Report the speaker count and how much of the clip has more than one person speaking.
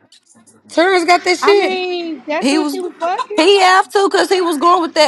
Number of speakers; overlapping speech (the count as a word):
three, about 16%